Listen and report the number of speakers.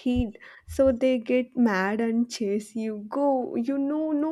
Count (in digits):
1